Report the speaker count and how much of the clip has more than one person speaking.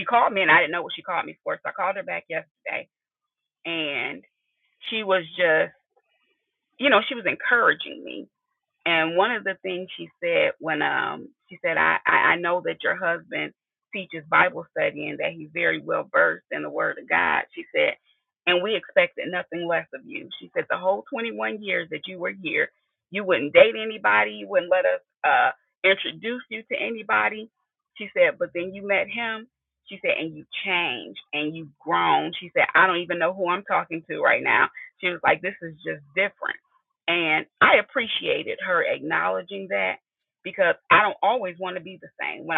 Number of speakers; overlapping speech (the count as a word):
one, no overlap